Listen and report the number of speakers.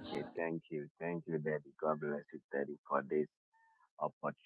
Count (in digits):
1